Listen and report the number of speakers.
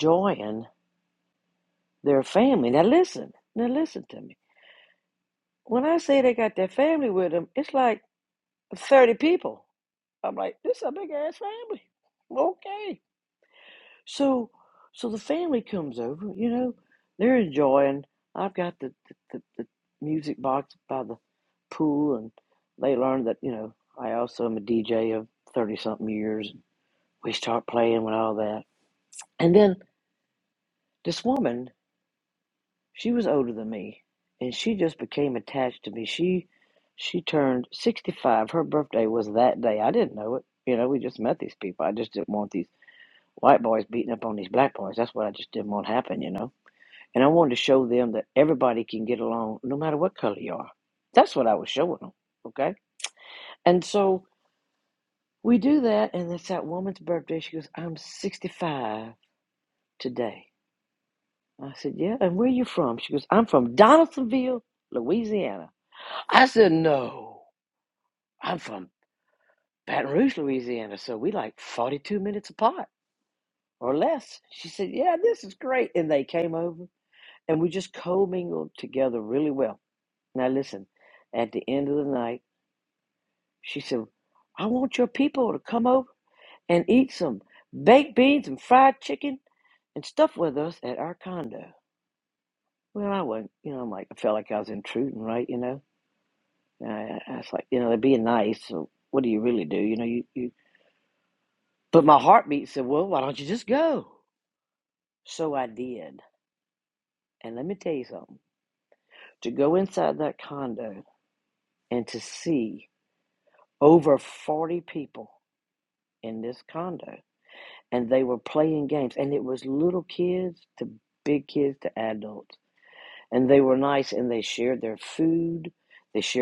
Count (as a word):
one